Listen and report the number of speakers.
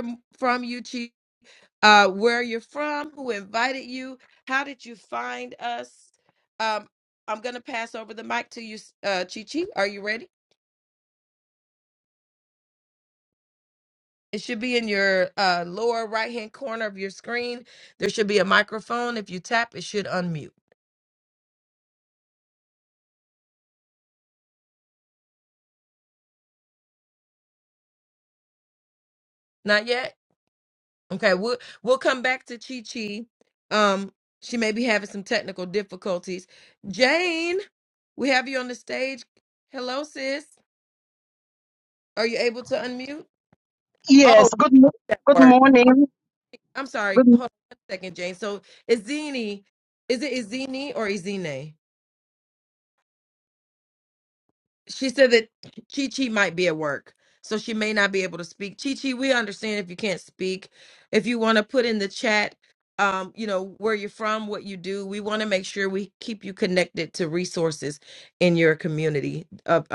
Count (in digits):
2